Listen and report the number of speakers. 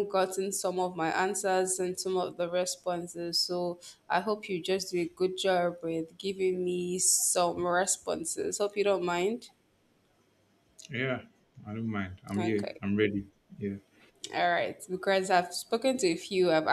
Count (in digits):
2